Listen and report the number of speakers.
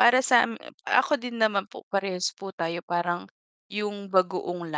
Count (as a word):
one